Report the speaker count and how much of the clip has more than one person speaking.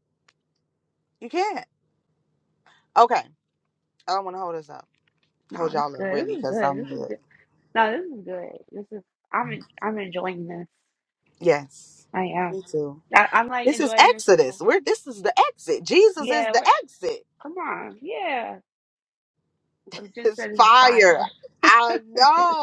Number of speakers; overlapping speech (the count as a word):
two, about 18%